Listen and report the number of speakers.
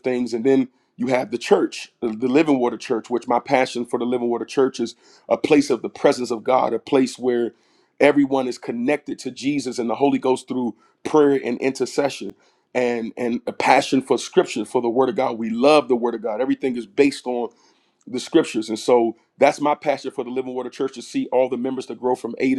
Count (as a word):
one